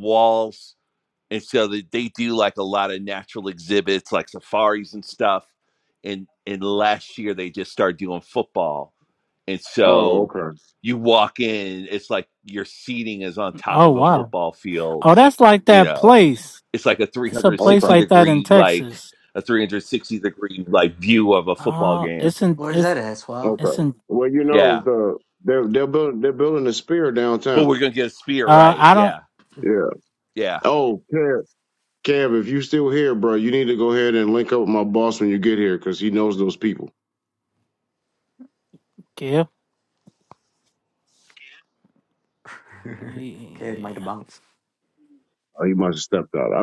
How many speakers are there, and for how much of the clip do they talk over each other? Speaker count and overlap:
4, about 12%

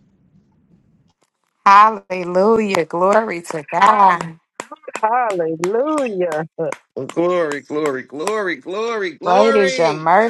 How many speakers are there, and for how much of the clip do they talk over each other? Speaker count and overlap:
3, about 10%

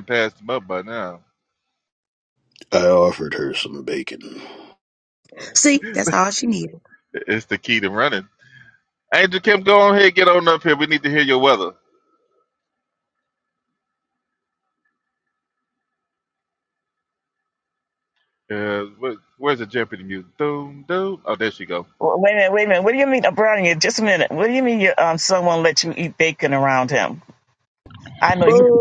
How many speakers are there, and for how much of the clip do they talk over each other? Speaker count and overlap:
4, about 1%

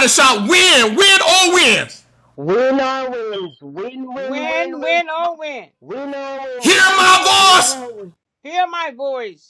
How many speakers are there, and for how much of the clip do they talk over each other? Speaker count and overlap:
3, about 24%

